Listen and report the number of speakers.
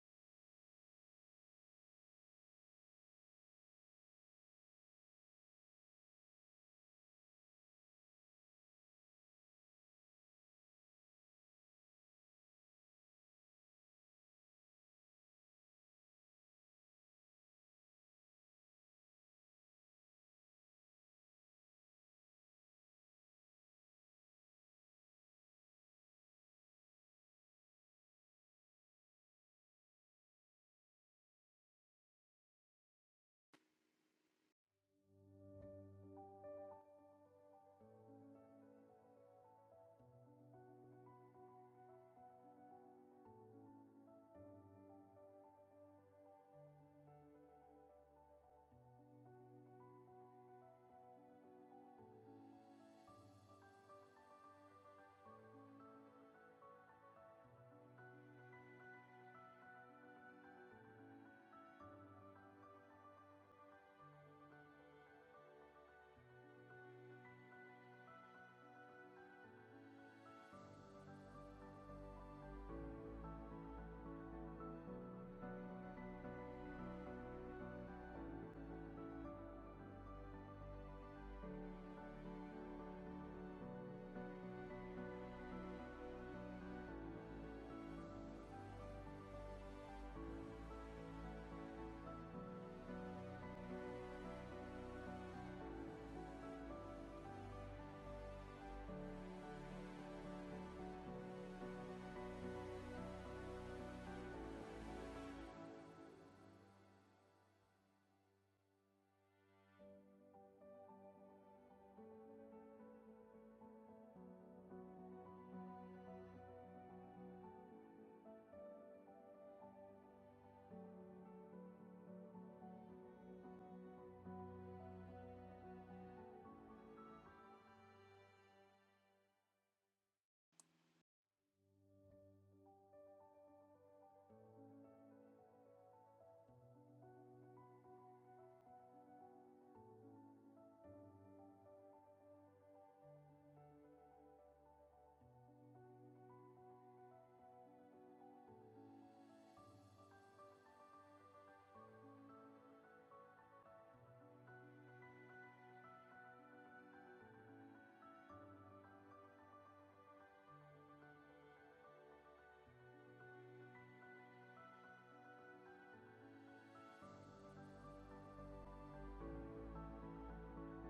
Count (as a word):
zero